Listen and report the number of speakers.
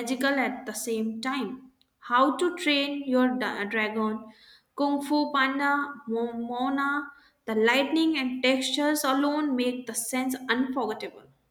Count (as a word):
one